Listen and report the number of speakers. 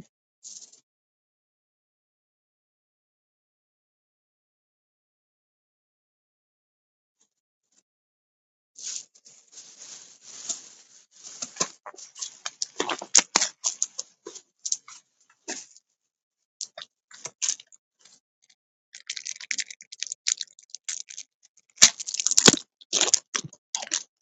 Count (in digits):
0